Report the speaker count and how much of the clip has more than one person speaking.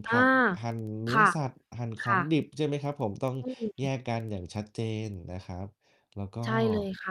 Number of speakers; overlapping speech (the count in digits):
2, about 10%